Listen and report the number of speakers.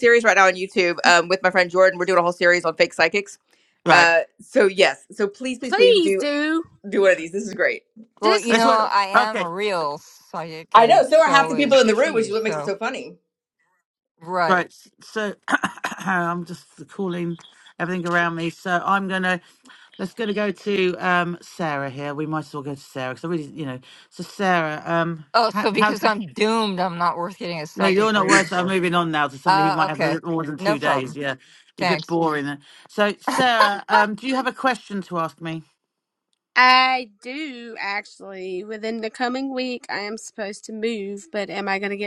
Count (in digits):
4